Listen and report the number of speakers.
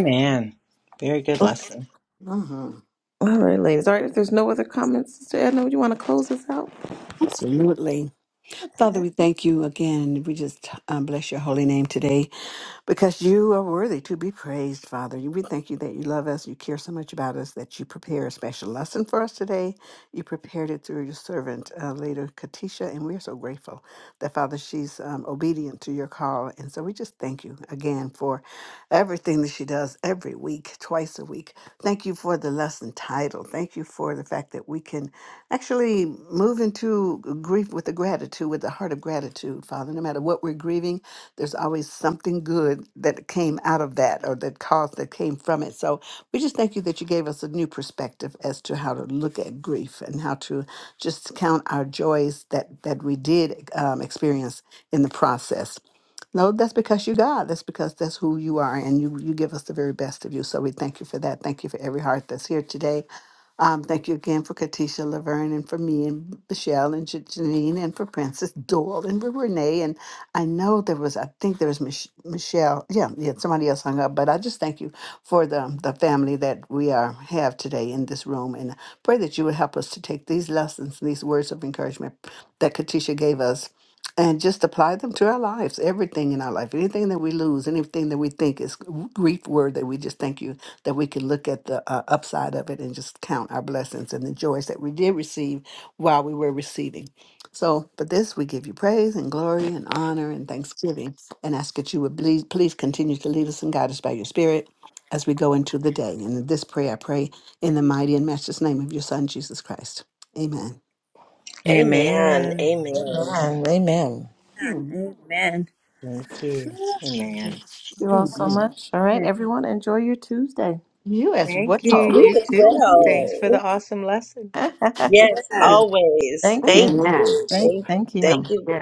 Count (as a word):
five